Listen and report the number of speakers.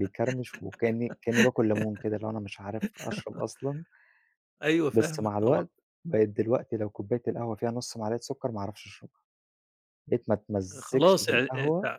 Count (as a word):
two